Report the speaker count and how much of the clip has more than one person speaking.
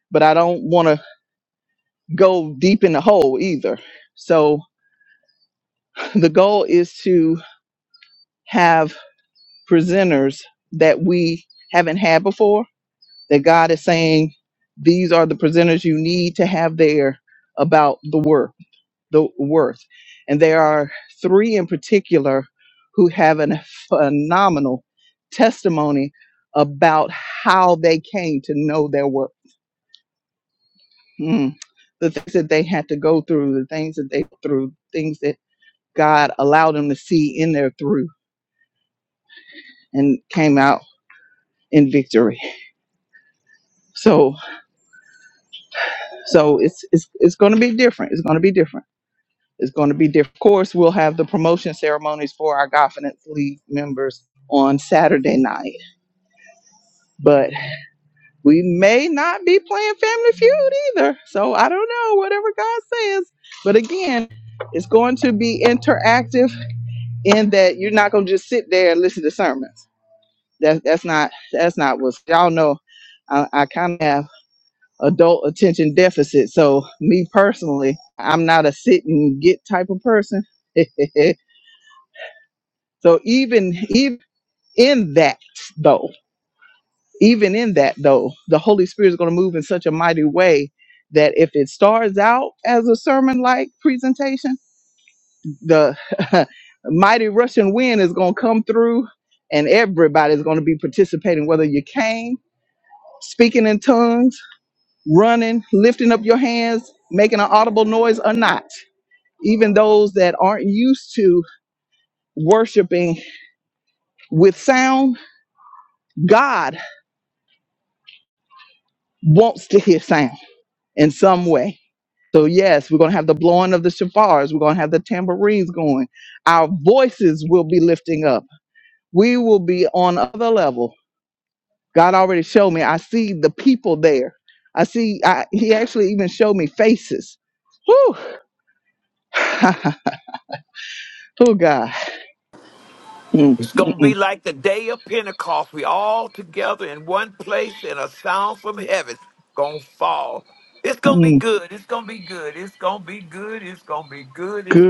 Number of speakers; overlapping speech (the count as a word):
two, about 1%